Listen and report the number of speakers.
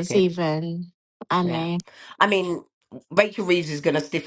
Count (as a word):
two